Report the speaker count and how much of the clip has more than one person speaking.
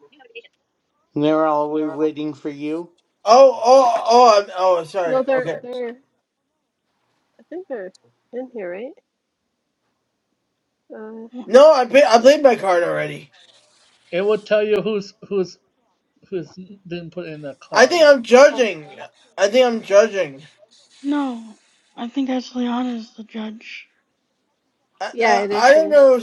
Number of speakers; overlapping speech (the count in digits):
5, about 9%